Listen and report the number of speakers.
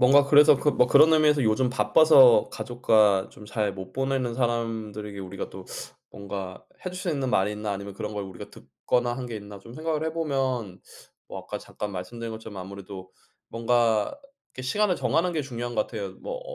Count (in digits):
1